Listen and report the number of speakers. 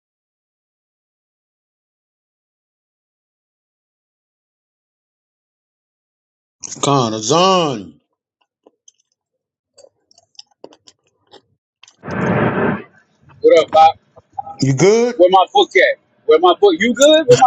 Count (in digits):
2